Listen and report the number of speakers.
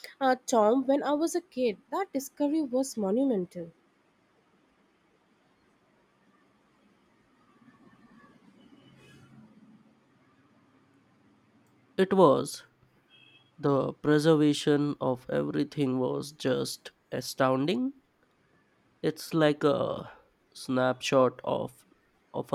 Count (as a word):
two